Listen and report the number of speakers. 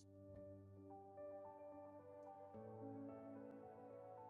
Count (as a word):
zero